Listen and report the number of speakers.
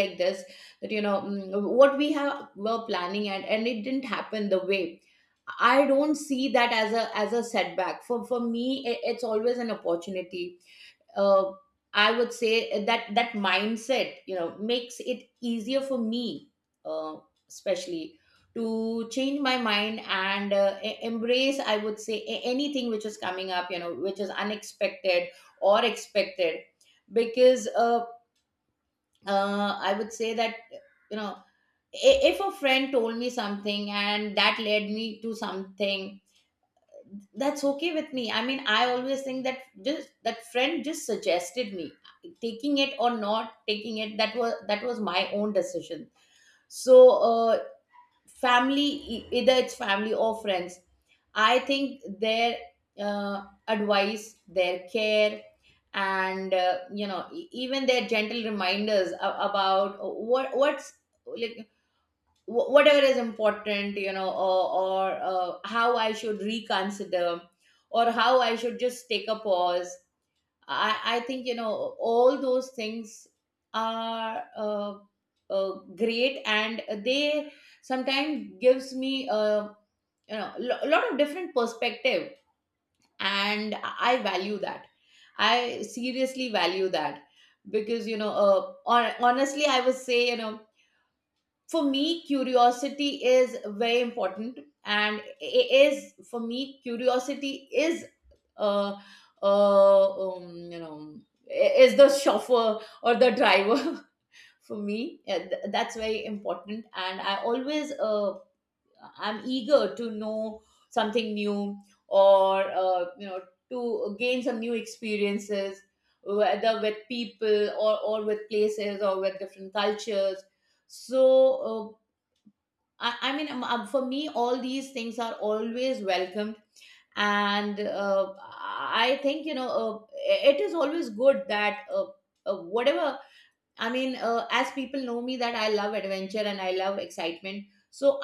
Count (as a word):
one